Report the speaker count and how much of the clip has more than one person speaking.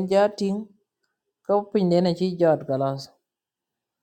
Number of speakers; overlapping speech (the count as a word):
one, no overlap